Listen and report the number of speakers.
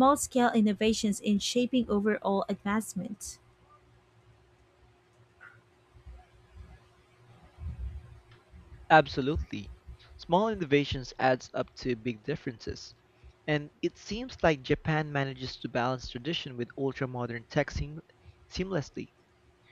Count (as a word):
two